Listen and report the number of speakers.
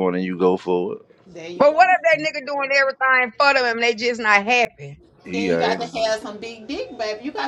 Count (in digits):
3